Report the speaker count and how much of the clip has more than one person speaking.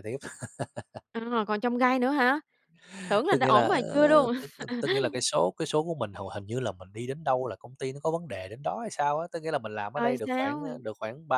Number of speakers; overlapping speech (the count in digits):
2, about 16%